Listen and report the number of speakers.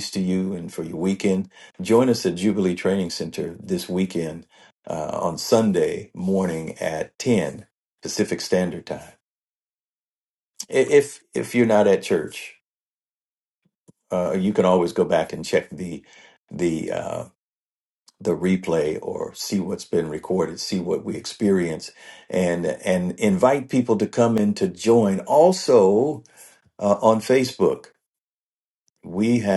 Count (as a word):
one